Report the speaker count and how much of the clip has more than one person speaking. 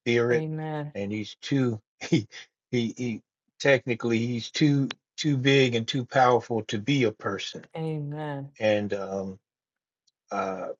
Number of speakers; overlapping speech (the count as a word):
two, about 1%